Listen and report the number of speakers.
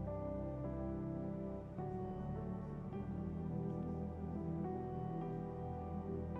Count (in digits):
0